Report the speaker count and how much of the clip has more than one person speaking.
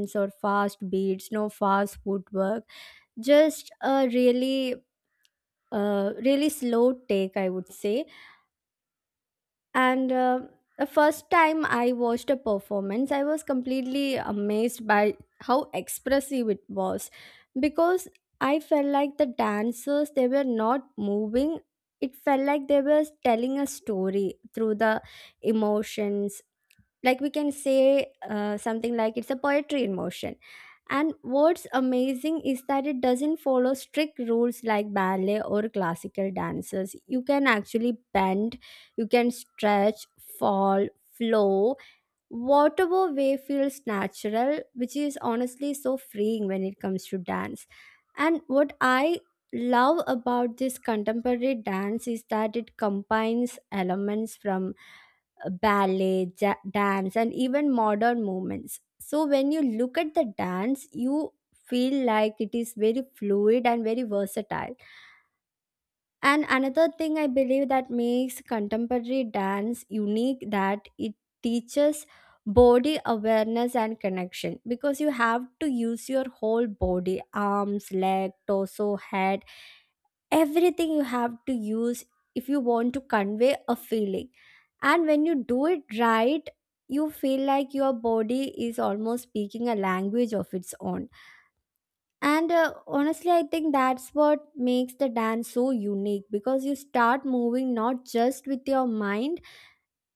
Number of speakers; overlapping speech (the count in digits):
1, no overlap